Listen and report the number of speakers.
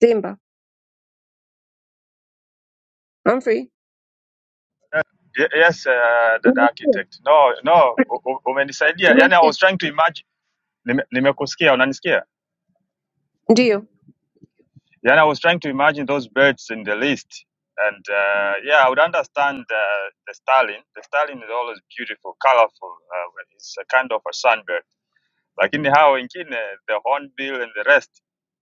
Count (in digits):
2